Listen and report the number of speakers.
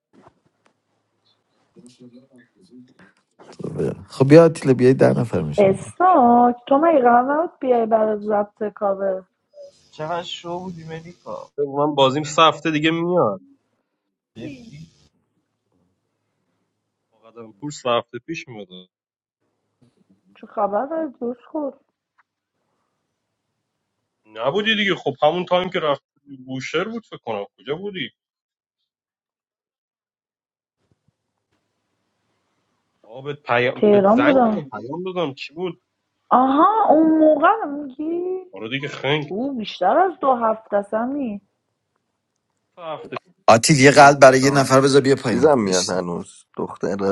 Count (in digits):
5